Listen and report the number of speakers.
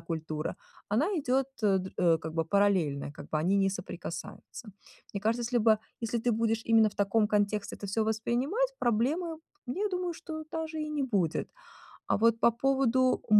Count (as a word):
one